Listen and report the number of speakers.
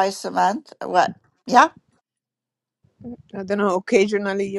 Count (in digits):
2